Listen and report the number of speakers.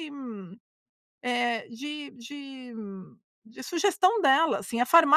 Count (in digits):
1